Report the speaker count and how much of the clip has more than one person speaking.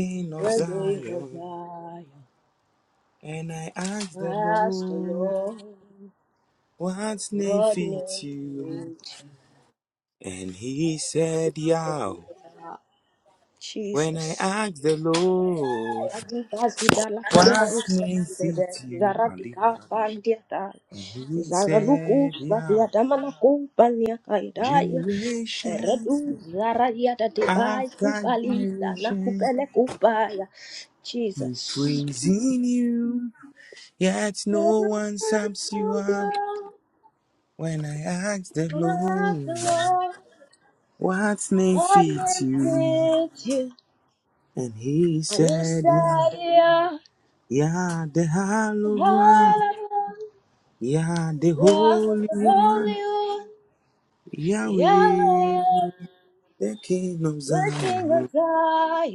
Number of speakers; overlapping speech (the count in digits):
2, about 30%